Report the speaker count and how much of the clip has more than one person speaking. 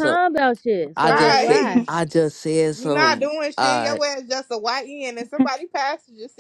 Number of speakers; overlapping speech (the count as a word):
three, about 36%